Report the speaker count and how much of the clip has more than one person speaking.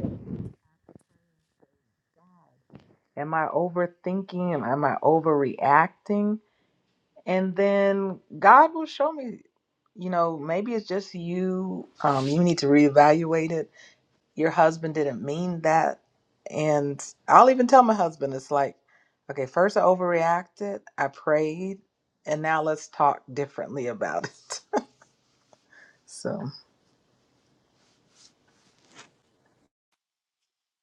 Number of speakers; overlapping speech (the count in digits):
1, no overlap